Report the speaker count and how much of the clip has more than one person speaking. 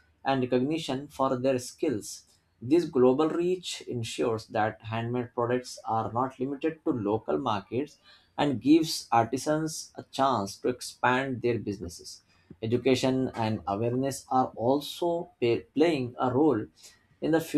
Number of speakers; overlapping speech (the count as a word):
one, no overlap